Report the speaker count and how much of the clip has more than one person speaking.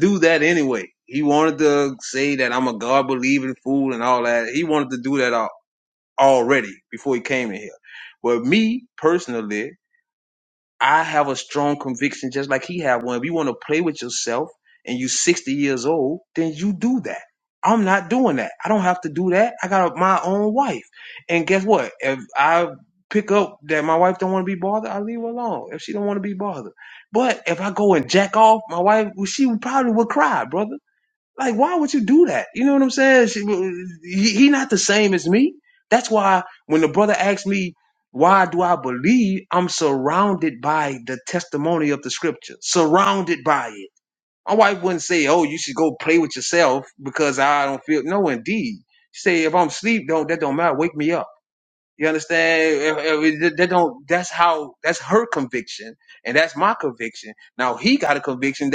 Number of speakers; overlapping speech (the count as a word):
one, no overlap